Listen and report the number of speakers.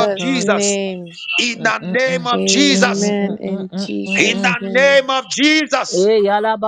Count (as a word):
three